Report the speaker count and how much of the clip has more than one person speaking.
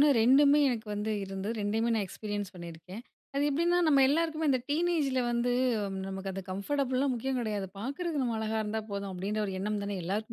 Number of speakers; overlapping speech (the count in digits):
1, no overlap